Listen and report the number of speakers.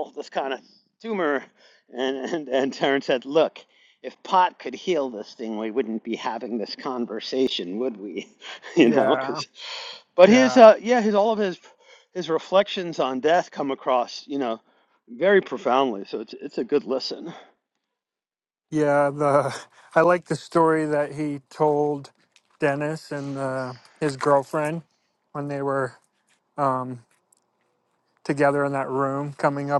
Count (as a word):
two